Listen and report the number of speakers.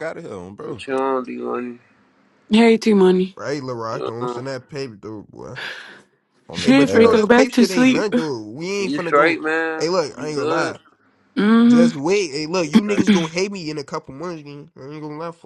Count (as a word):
four